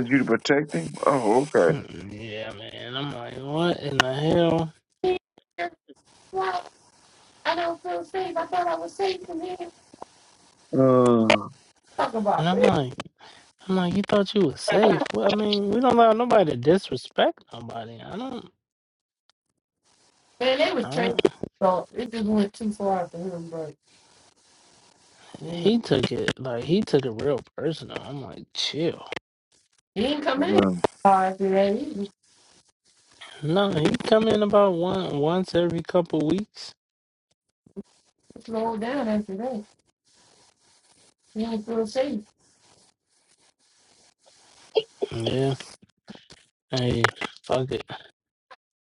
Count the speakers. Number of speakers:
3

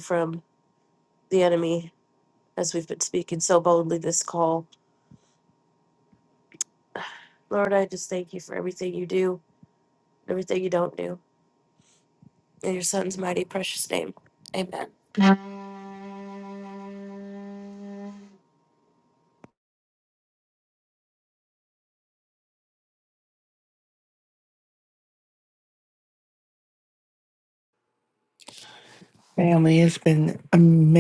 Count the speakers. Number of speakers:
2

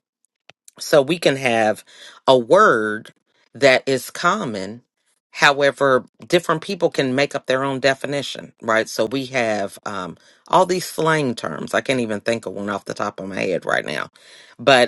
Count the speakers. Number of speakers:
1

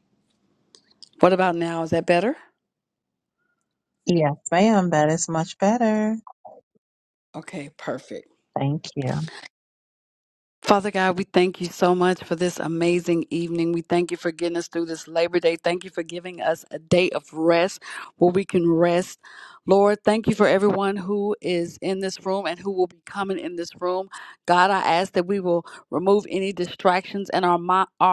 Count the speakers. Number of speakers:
2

